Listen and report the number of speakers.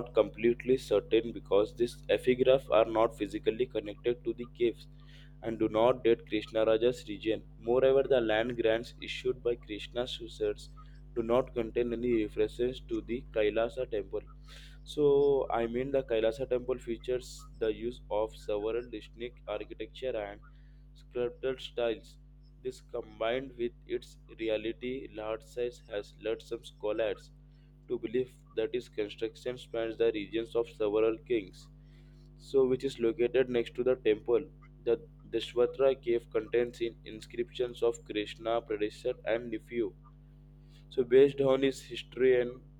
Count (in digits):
1